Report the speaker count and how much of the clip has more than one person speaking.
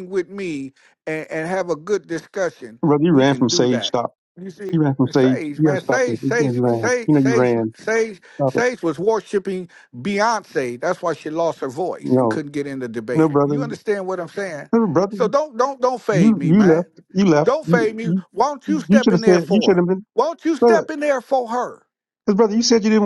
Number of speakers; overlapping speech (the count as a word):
two, about 33%